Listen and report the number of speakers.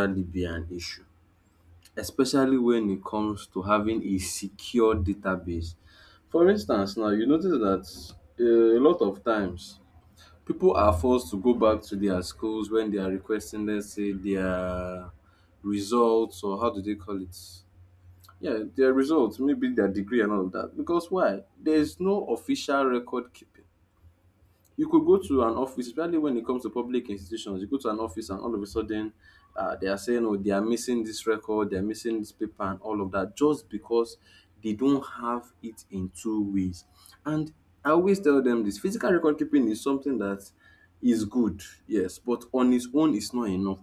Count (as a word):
one